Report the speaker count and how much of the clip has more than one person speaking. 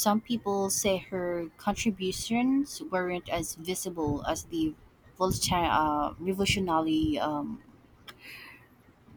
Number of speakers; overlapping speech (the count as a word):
one, no overlap